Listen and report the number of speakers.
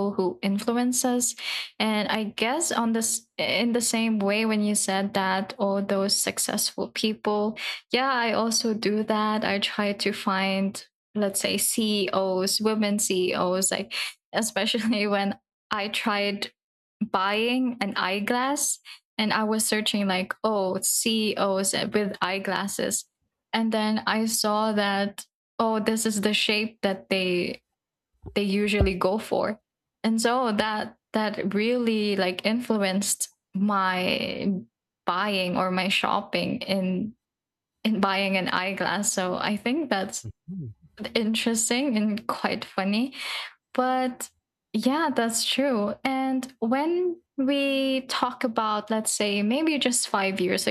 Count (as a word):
one